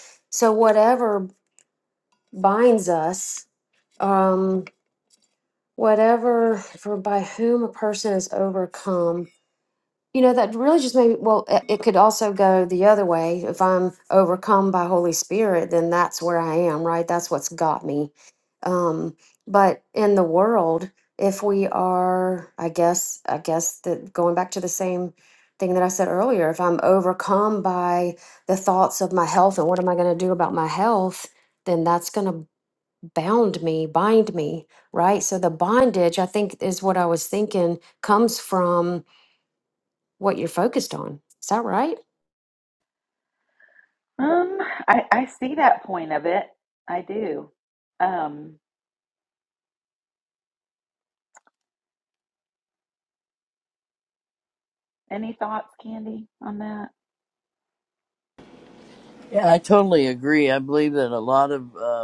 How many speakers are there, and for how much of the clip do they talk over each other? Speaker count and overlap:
3, no overlap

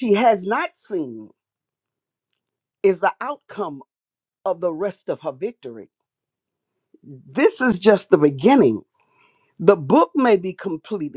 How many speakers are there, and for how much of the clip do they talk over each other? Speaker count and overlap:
1, no overlap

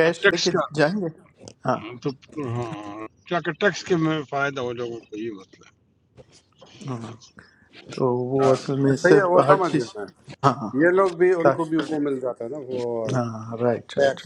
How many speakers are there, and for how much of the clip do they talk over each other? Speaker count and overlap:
3, about 17%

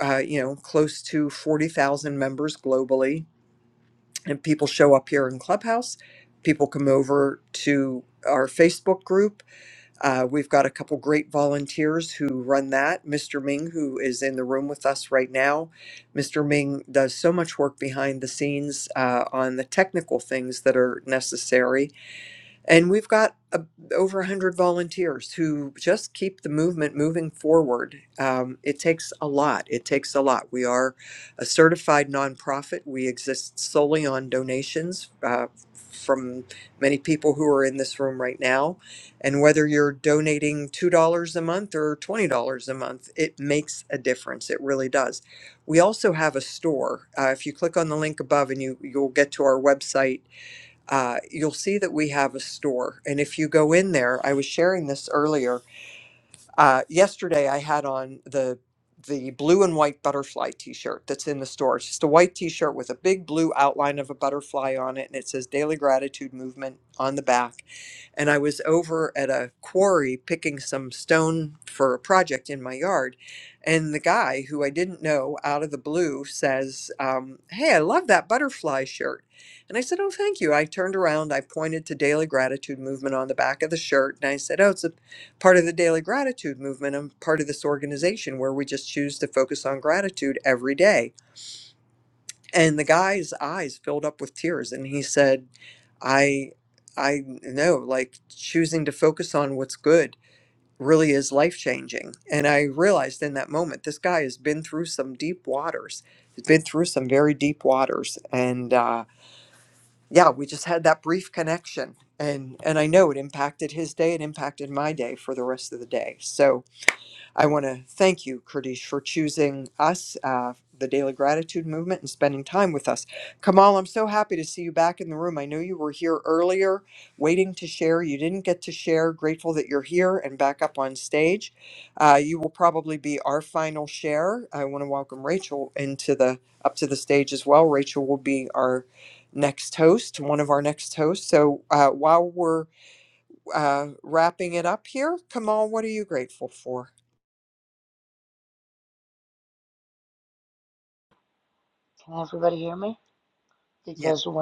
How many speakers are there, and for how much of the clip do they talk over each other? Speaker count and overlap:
2, no overlap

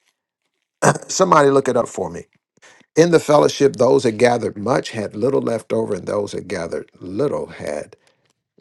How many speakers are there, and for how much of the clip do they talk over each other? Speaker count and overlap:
1, no overlap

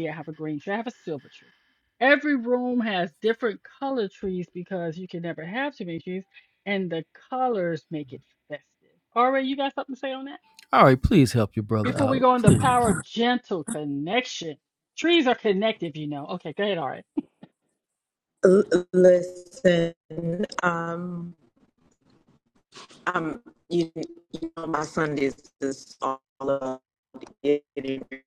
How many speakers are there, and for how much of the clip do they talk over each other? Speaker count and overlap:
3, about 3%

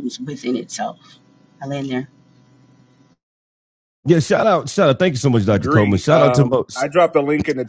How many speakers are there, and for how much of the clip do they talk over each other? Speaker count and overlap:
3, about 15%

